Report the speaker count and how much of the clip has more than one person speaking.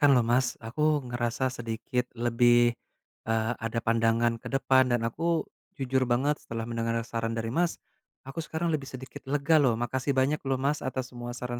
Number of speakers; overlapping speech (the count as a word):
one, no overlap